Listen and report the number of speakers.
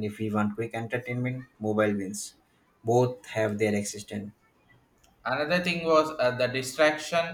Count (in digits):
2